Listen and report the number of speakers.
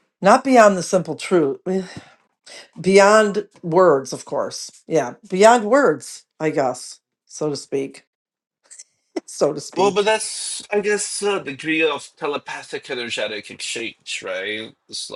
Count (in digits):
2